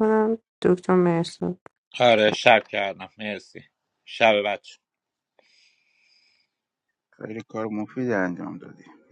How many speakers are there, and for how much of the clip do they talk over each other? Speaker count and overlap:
three, no overlap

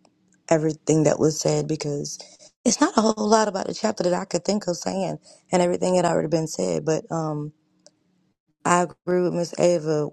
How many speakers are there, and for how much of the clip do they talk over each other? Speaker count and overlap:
one, no overlap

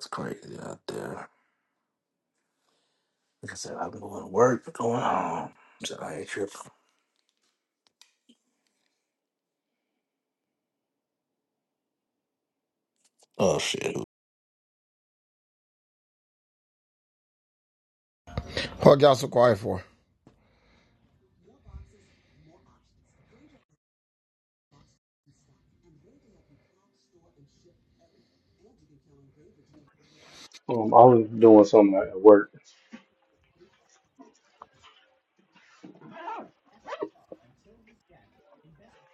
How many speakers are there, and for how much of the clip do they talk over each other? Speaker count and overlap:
three, no overlap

